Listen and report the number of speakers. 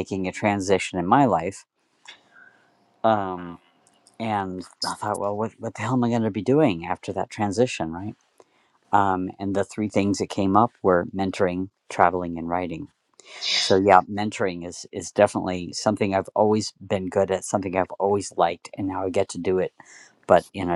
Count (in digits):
1